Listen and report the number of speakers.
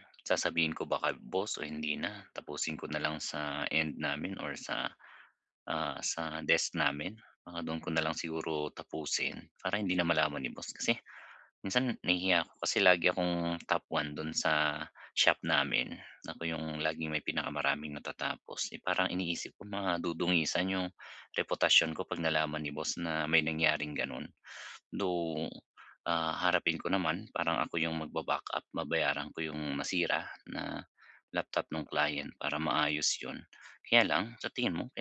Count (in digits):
1